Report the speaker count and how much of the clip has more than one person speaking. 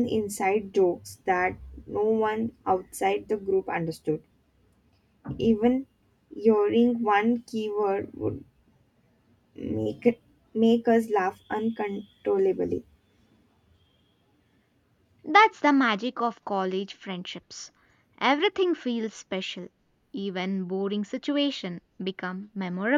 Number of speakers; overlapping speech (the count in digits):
2, no overlap